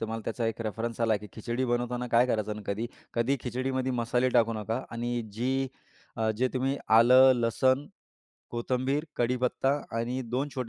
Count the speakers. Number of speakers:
1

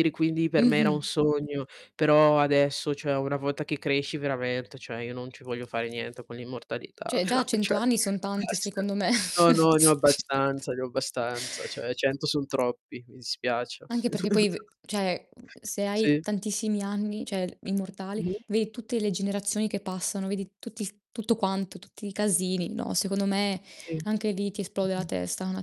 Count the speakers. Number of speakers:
2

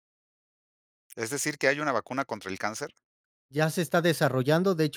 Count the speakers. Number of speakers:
2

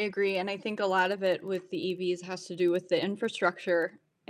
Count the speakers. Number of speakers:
1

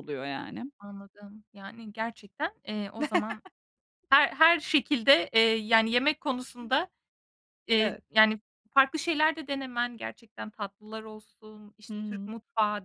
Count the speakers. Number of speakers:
2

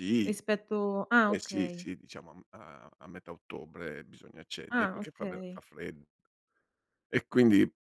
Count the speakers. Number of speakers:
2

